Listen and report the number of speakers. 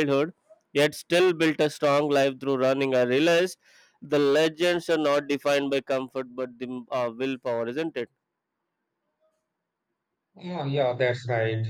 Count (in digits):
2